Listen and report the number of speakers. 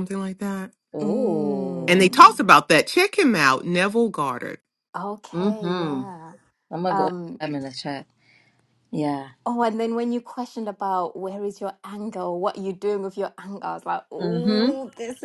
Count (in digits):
3